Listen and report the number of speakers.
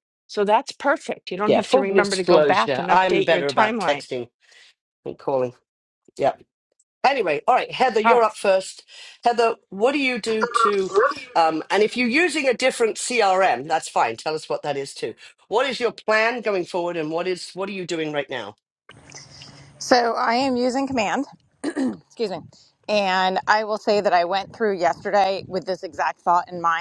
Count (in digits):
3